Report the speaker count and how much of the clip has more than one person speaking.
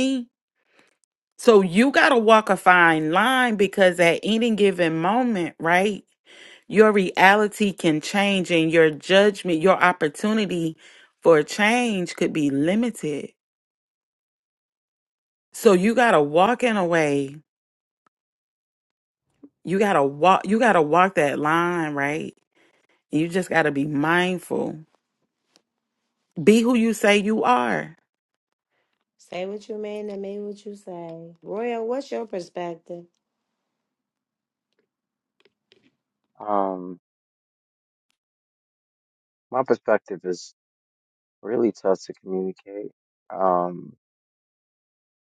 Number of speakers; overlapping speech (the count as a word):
three, no overlap